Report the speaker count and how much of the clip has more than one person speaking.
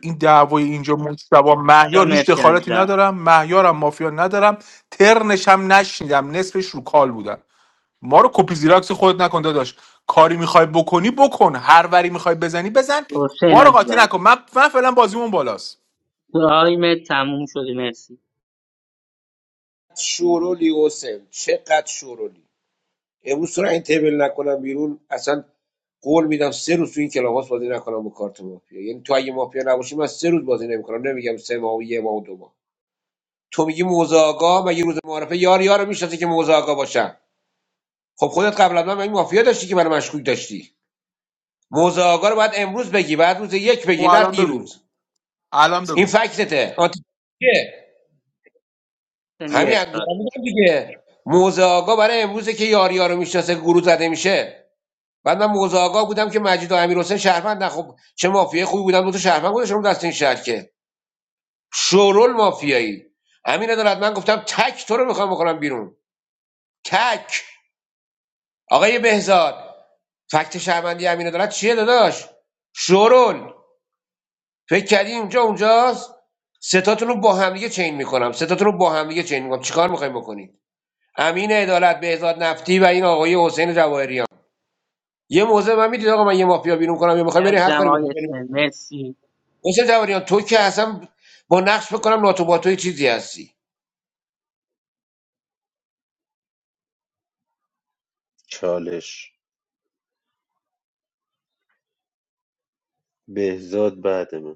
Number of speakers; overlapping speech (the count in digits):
4, about 4%